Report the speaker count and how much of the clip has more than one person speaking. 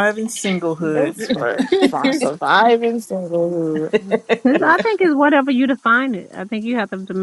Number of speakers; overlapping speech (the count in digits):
3, about 5%